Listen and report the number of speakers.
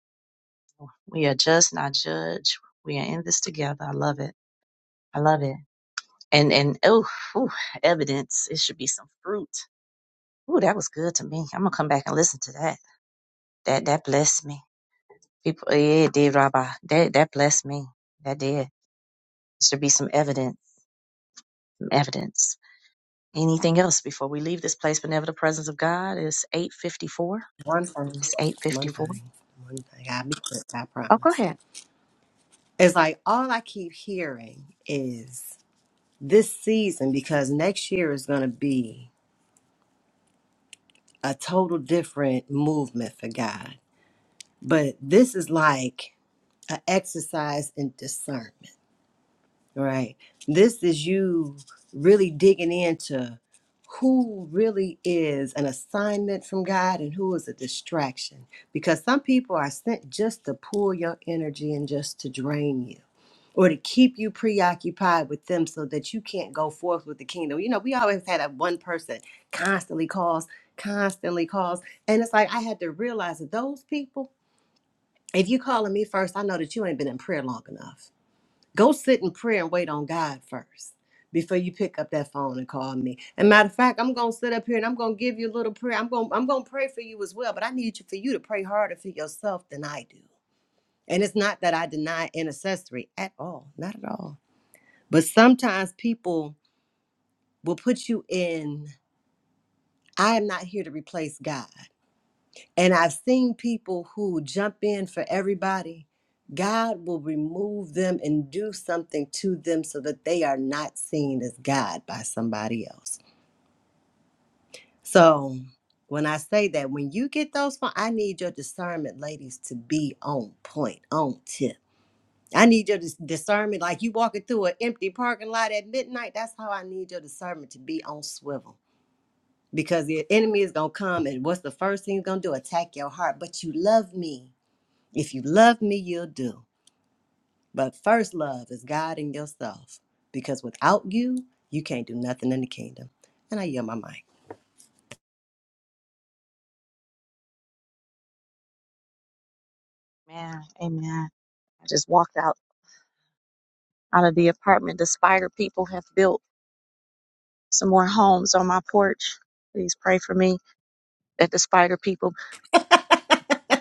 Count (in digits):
2